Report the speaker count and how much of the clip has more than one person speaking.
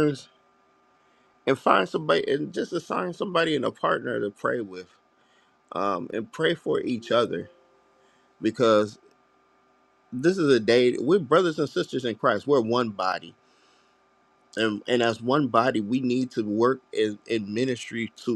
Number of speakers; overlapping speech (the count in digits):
1, no overlap